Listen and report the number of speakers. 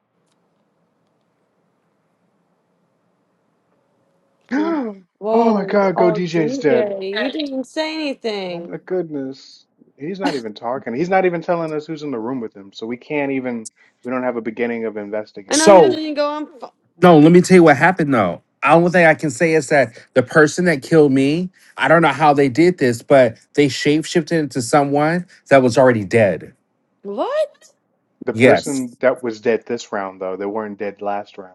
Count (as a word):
three